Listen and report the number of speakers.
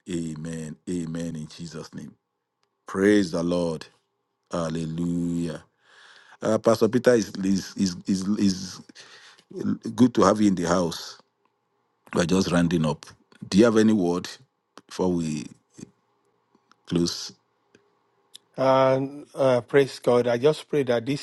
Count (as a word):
two